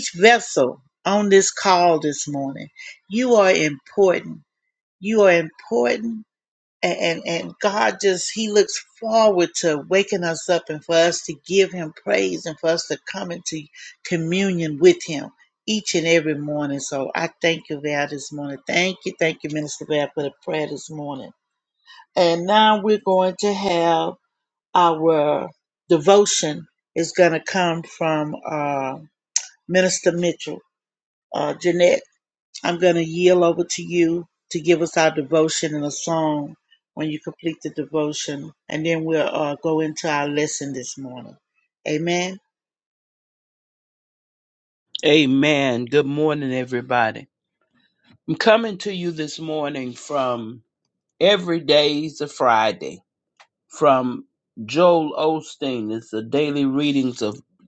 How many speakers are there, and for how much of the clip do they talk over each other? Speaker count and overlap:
two, no overlap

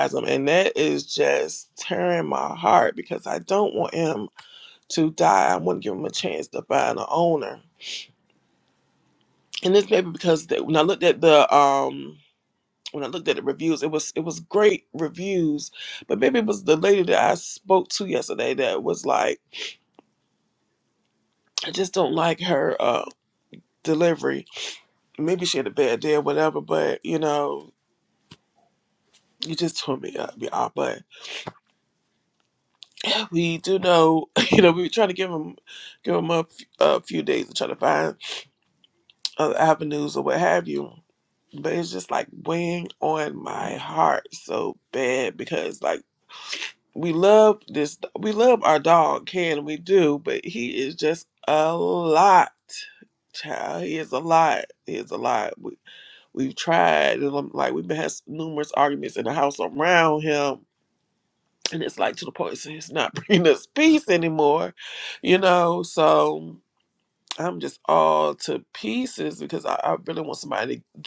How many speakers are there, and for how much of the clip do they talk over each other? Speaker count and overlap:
one, no overlap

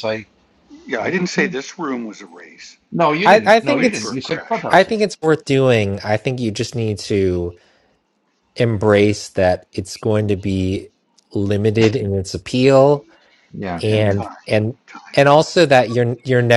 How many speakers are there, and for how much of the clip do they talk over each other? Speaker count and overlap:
three, about 18%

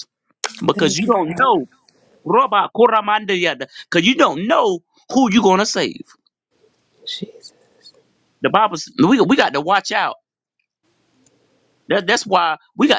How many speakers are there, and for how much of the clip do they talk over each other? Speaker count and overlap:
two, about 6%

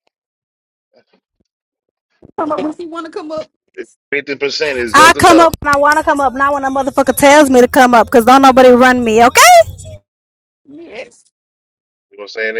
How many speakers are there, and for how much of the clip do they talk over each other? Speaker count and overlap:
three, about 5%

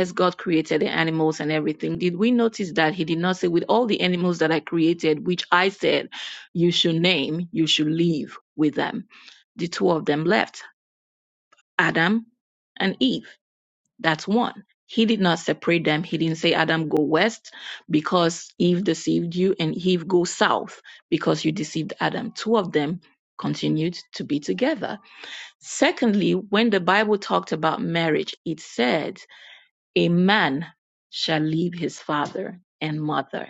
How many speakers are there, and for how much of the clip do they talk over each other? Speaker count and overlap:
one, no overlap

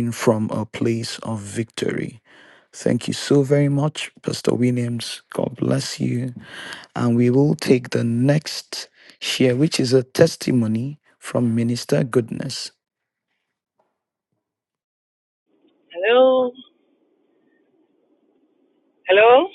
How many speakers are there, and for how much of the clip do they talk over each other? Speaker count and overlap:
two, no overlap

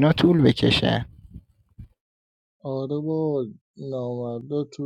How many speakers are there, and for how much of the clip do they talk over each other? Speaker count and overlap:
two, no overlap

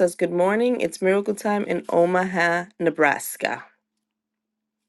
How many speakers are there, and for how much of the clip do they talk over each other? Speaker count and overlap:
one, no overlap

